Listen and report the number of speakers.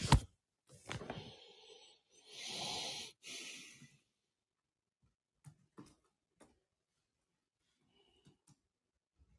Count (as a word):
zero